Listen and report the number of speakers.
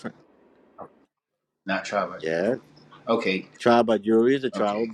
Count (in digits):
2